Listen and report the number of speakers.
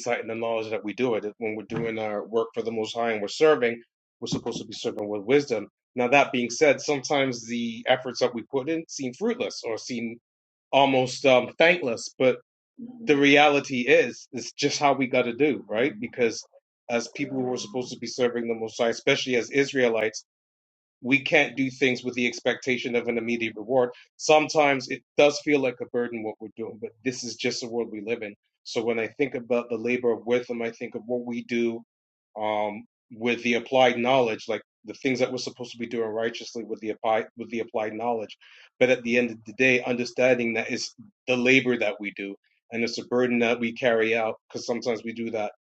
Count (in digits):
1